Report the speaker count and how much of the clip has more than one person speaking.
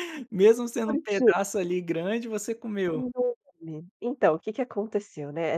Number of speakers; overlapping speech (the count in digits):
2, about 11%